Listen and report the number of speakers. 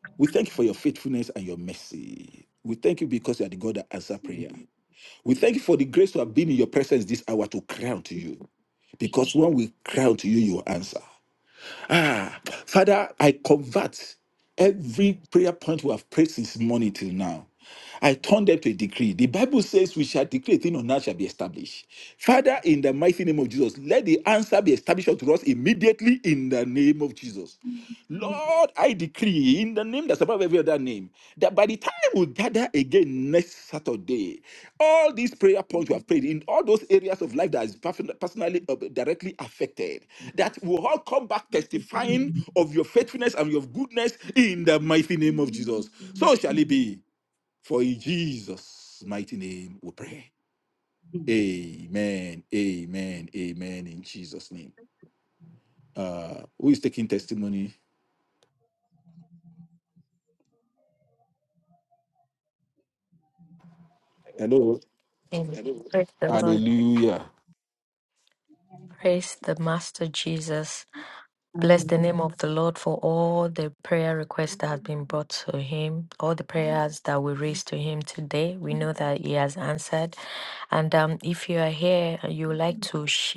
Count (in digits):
2